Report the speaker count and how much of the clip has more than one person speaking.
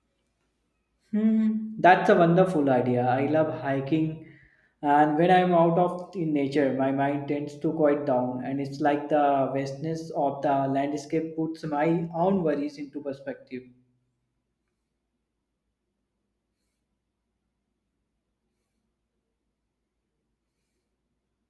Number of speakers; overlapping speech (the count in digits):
1, no overlap